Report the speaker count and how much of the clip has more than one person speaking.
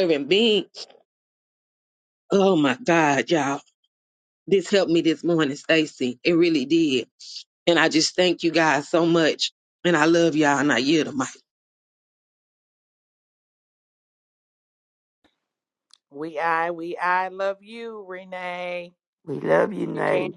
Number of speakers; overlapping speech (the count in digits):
3, about 2%